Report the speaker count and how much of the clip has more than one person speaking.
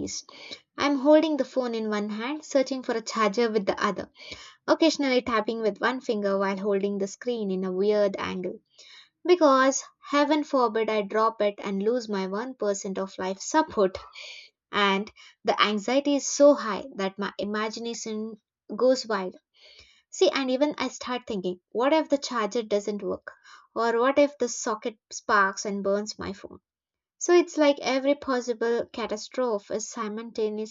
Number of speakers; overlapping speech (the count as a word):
one, no overlap